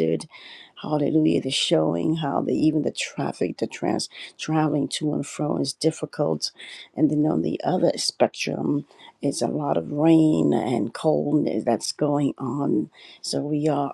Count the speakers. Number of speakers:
one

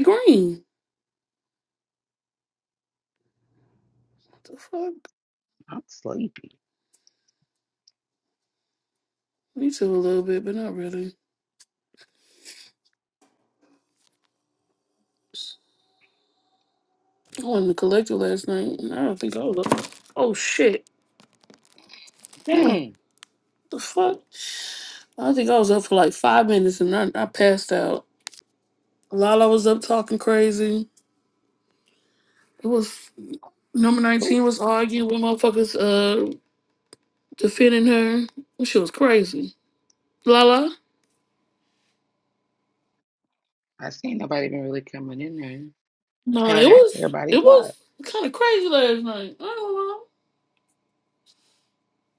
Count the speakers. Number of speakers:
two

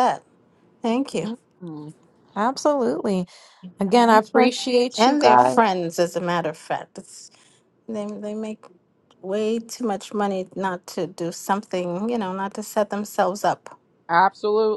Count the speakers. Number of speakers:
three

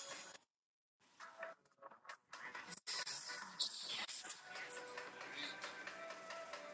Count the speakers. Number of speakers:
zero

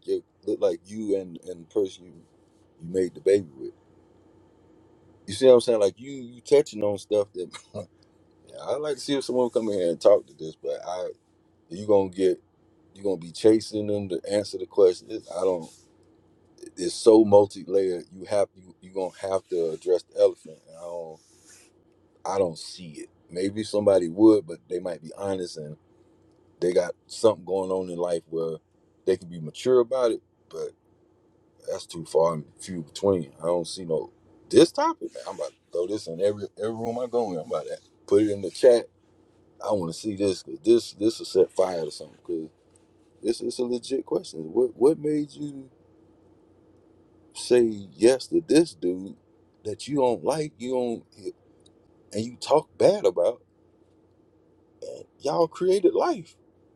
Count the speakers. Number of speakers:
one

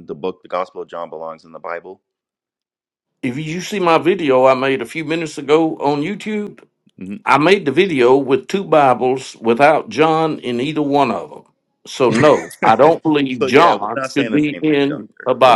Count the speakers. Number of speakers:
two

